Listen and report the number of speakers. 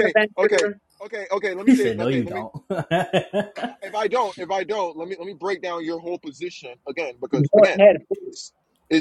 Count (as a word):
three